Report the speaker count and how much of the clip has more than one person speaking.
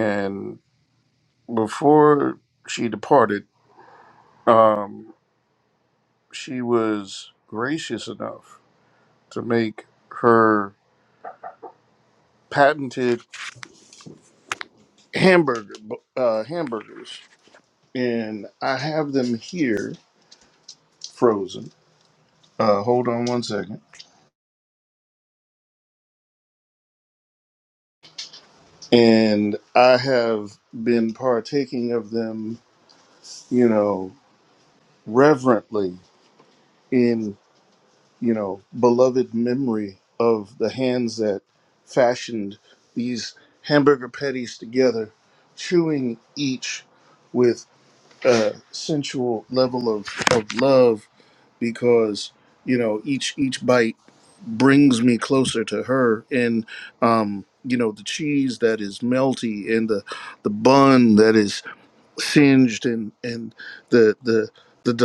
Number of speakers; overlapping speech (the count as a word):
one, no overlap